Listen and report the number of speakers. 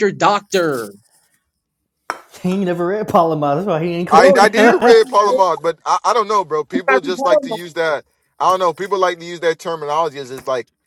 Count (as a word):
three